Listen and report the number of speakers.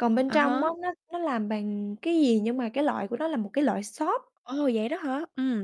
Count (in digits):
2